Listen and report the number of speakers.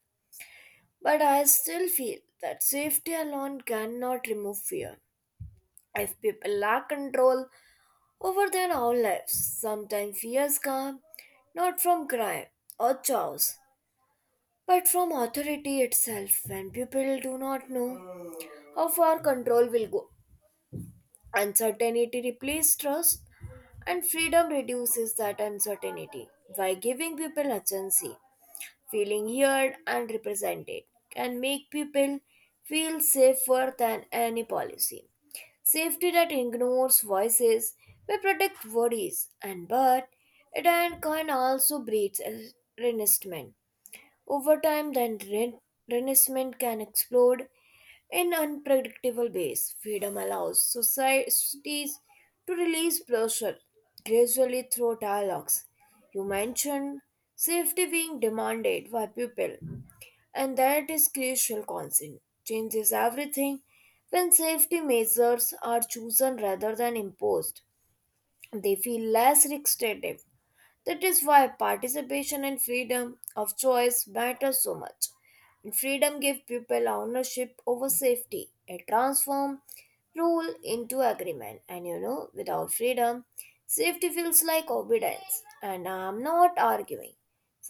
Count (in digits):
1